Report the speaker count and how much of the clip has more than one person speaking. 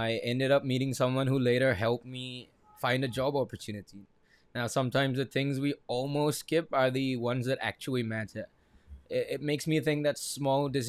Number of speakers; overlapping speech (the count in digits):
1, no overlap